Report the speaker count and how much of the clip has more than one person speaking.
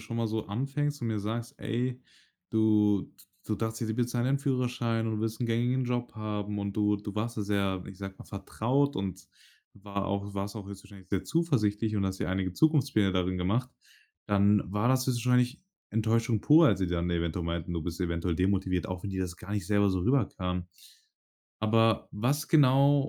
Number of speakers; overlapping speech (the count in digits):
1, no overlap